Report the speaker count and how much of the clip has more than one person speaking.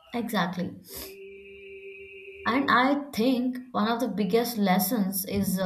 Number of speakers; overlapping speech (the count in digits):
1, no overlap